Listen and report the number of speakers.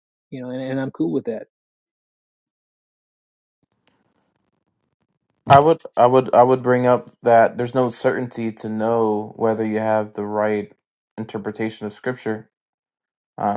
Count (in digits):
2